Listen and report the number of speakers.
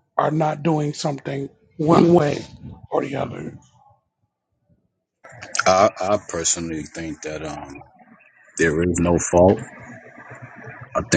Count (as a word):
two